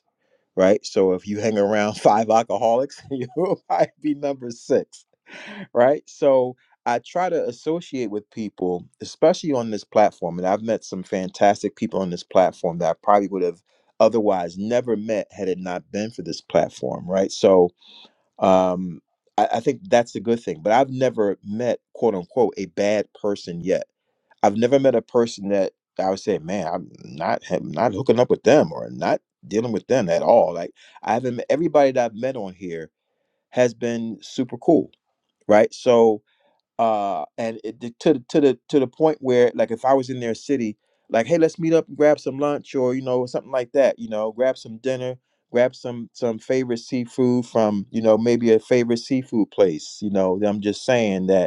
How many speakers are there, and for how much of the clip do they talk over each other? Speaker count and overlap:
one, no overlap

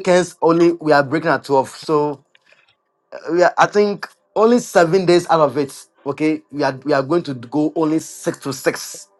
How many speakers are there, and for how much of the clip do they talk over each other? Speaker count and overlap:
one, no overlap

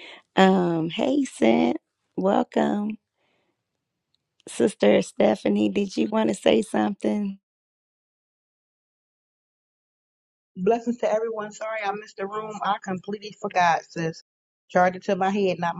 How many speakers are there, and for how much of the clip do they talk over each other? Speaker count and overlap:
two, no overlap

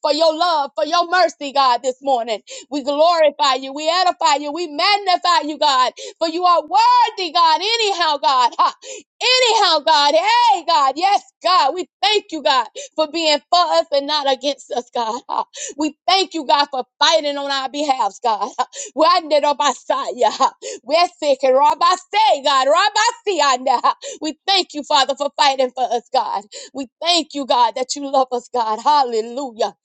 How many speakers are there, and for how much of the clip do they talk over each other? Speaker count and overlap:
one, no overlap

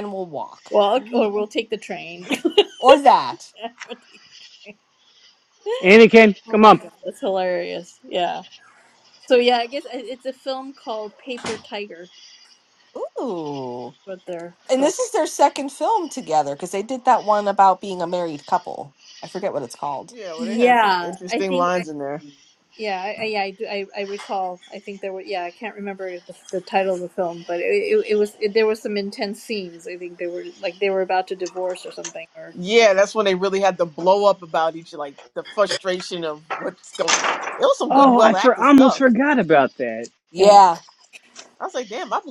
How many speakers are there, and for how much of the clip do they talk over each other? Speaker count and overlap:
four, about 8%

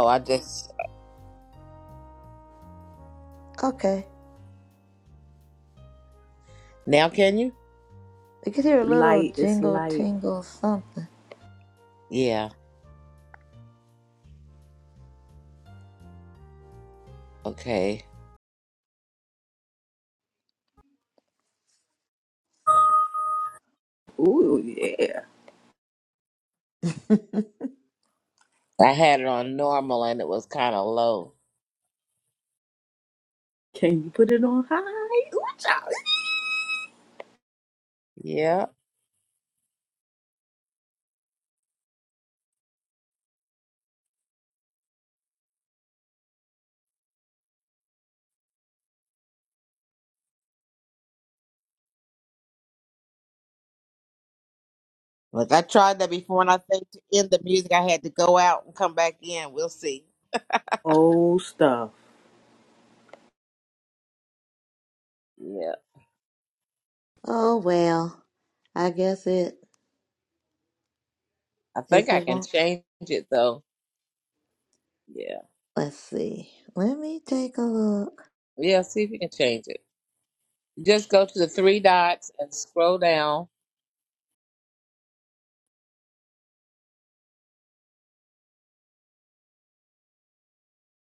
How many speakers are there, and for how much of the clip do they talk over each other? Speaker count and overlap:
three, about 2%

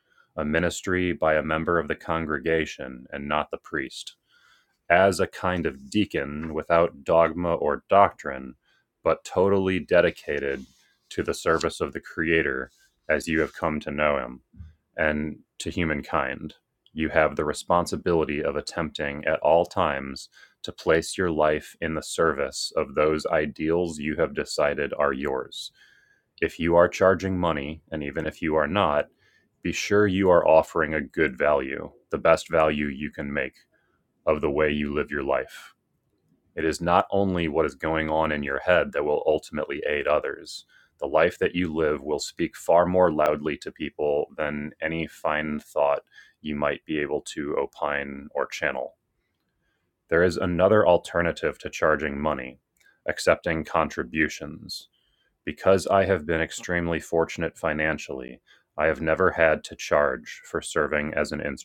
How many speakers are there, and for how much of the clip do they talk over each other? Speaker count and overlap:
one, no overlap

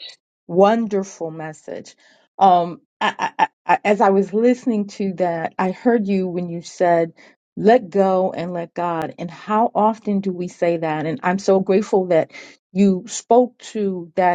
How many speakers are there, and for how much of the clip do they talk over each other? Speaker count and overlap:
one, no overlap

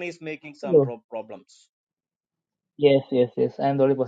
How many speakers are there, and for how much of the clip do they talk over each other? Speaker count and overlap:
two, about 5%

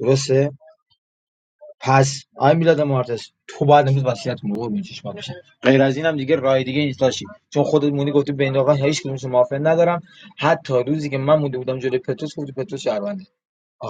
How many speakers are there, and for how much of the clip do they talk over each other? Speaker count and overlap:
one, no overlap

